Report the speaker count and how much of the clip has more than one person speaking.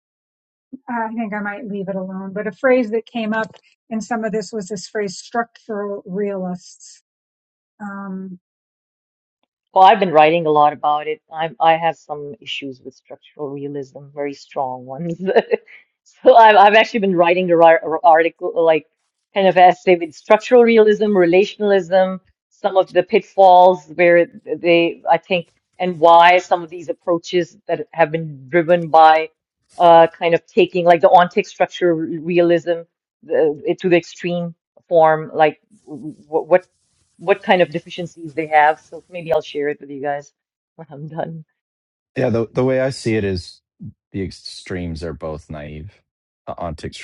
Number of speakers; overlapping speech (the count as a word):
three, no overlap